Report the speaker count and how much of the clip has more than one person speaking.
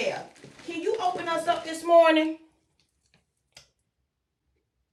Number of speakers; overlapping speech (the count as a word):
one, no overlap